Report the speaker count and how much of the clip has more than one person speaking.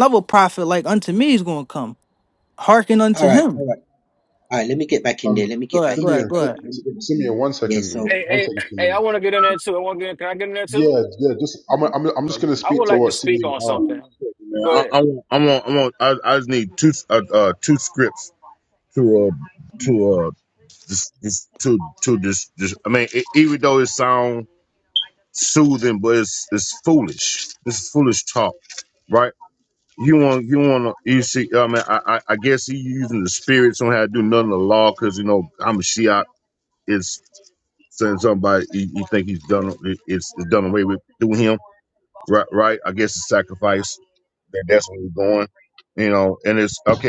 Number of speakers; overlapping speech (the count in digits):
5, about 12%